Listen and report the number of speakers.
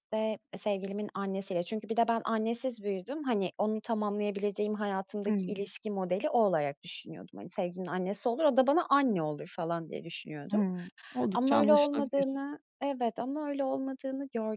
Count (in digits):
2